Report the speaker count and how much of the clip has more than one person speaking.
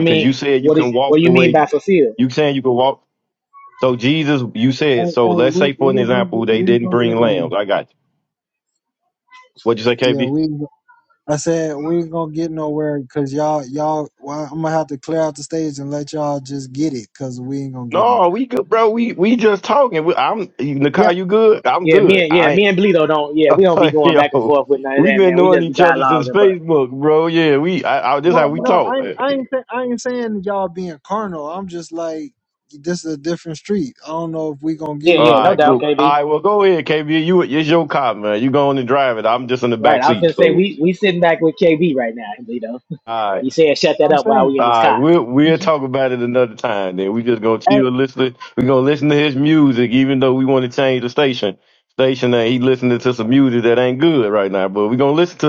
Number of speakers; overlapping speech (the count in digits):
3, about 22%